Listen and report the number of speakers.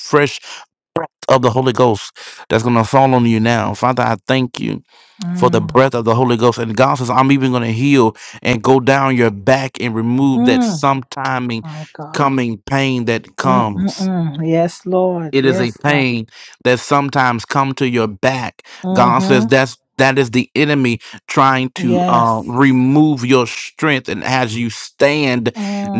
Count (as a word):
two